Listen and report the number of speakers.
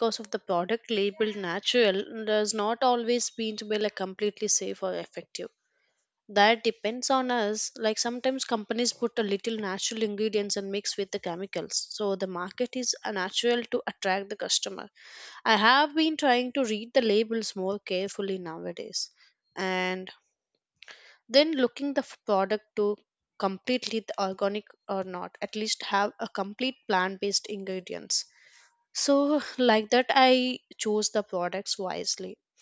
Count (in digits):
1